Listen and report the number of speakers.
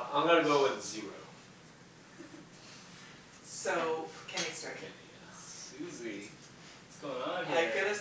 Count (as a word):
three